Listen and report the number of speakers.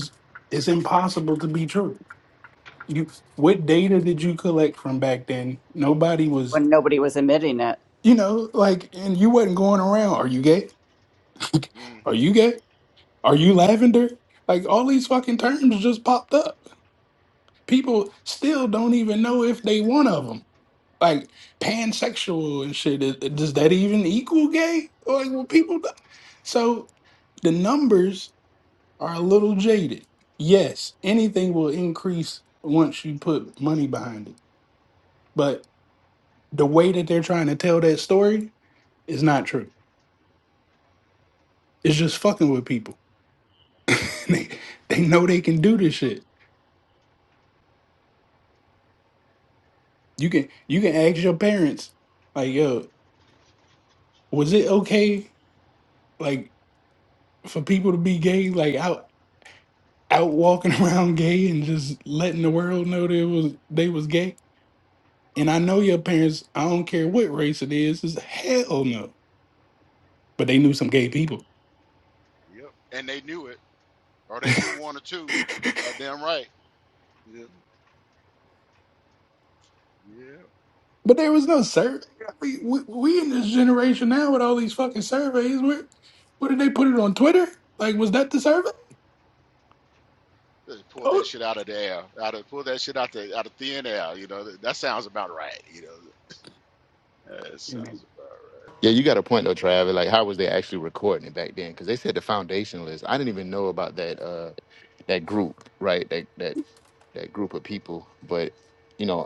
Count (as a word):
four